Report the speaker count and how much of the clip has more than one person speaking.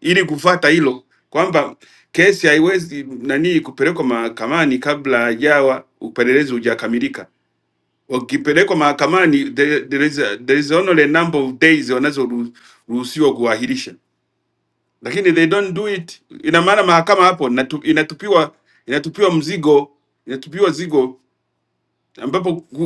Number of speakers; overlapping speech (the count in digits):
1, no overlap